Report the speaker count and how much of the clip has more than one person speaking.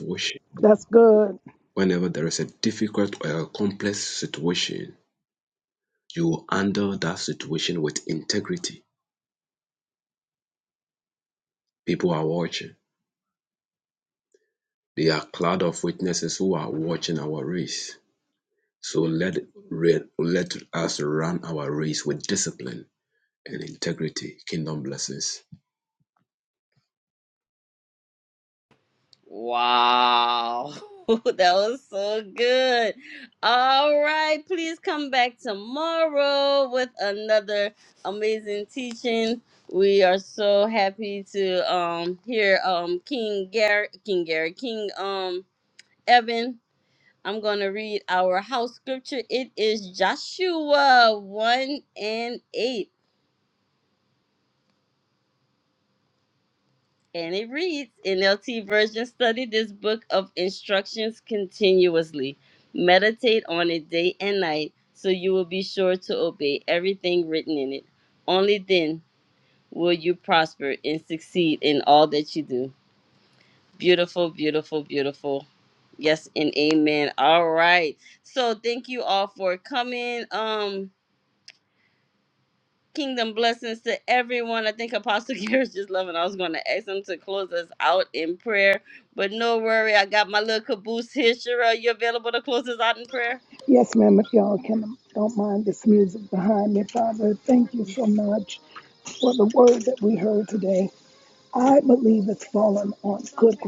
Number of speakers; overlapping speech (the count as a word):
three, no overlap